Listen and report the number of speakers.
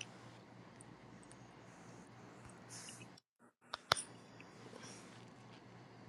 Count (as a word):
zero